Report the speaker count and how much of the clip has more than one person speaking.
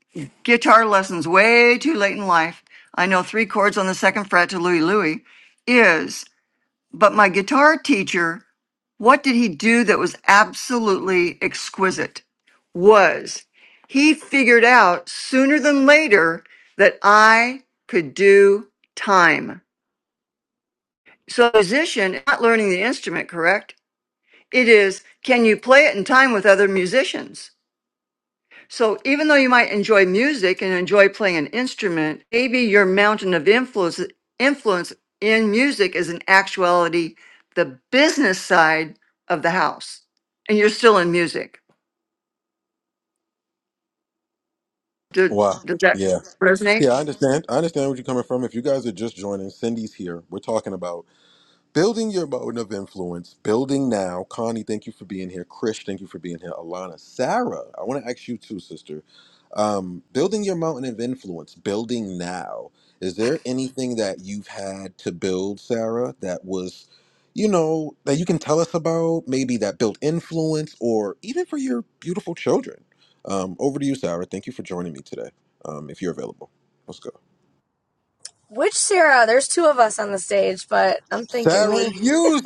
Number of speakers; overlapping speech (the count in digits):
3, about 1%